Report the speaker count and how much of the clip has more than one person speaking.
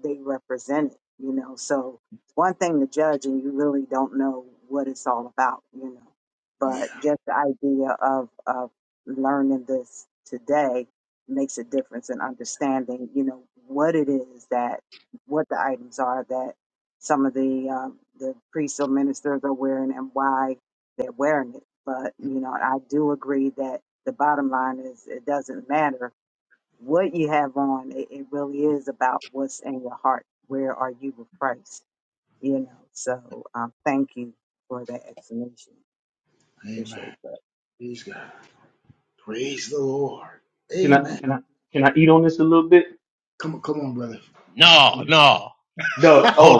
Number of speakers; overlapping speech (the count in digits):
4, about 2%